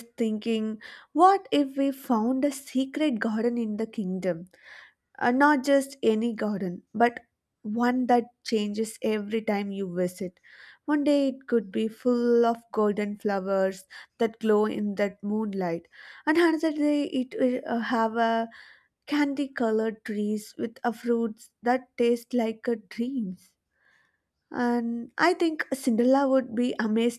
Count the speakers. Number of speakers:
1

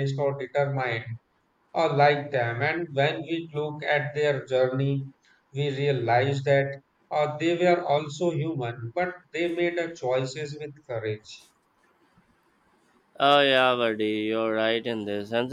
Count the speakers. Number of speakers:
2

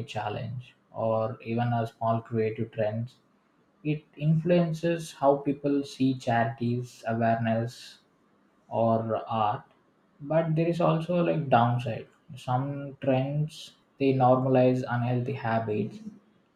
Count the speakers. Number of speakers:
1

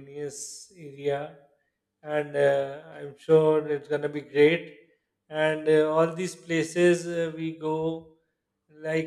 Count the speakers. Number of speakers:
1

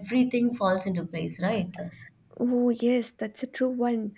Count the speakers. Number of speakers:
2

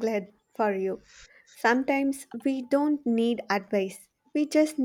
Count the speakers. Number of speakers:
1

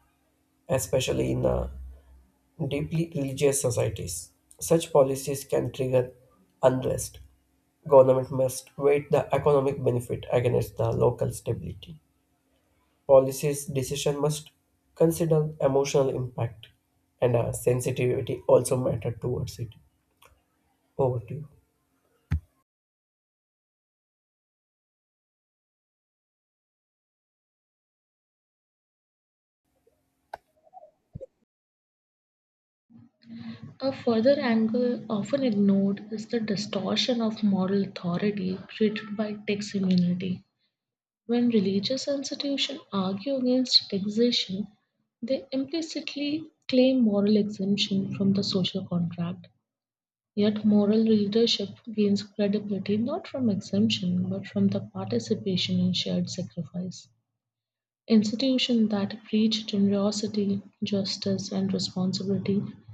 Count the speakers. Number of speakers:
2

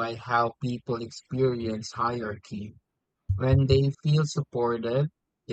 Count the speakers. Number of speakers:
1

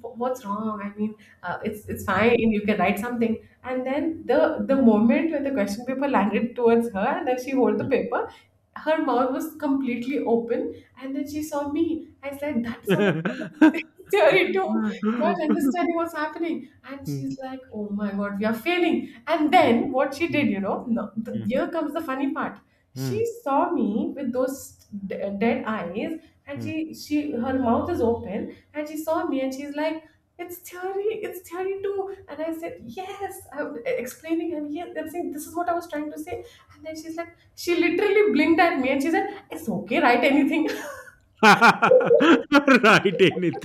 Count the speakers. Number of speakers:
2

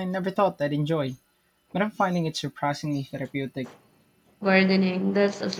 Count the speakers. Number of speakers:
2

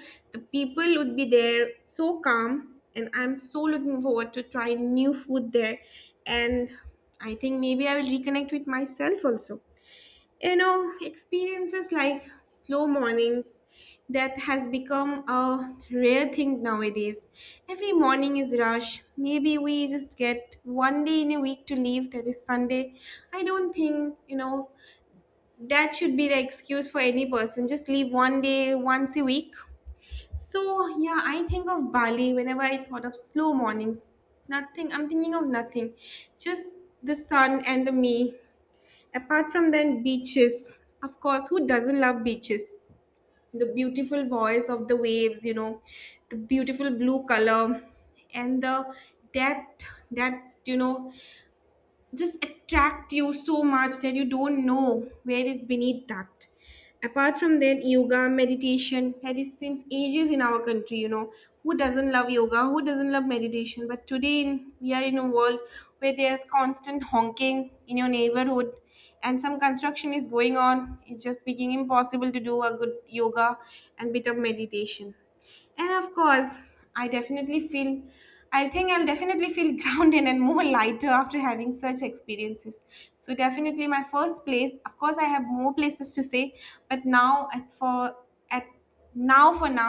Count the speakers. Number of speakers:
1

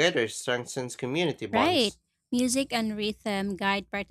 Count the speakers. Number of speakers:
2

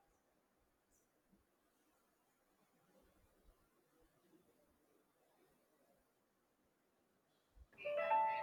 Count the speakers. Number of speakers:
0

